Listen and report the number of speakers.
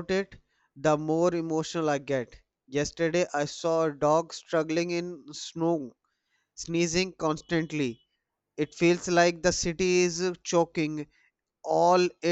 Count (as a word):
one